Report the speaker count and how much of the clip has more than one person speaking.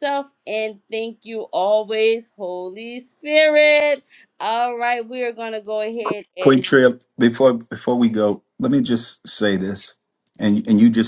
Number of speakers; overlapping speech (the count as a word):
two, about 2%